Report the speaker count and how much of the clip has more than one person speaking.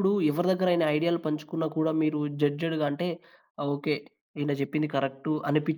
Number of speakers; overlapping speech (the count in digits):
1, no overlap